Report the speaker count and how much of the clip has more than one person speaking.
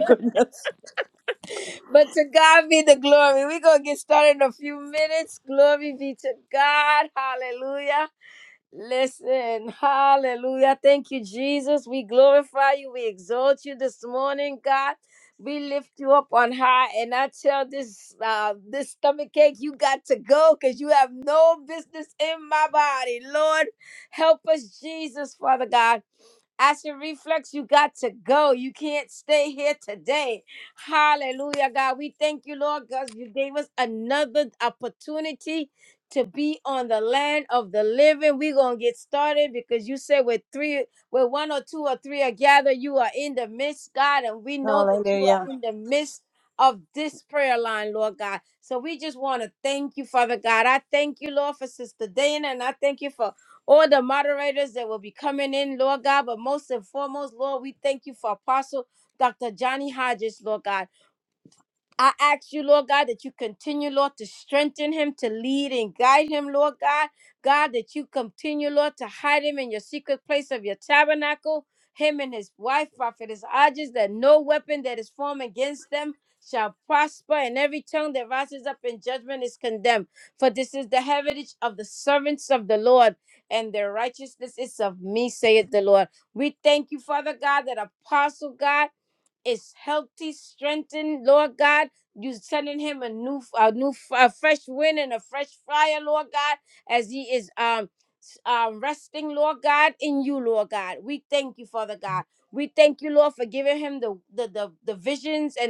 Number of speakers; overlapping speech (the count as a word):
two, about 1%